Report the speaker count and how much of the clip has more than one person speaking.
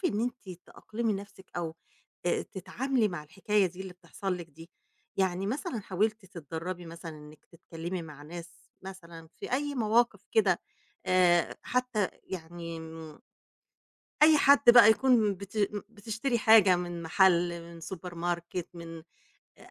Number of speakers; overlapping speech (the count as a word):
one, no overlap